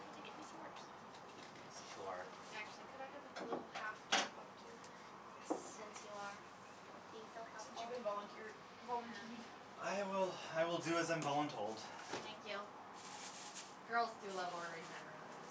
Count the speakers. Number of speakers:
3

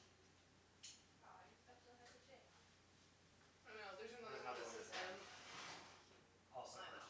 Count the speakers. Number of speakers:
3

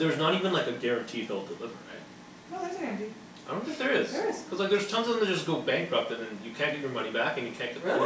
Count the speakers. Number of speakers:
2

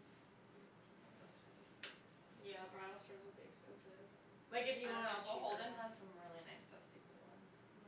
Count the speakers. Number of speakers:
2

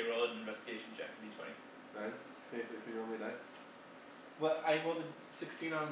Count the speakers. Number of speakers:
3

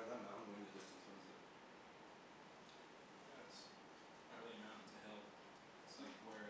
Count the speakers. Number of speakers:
2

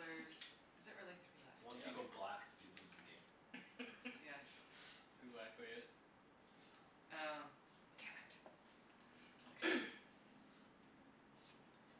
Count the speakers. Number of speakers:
3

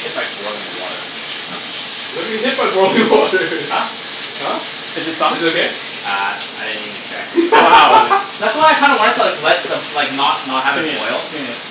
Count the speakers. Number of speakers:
3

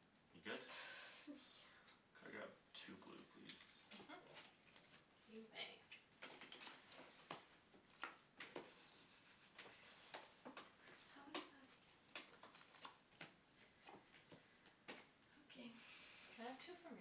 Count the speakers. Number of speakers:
3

